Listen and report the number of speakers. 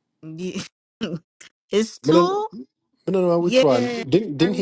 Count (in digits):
2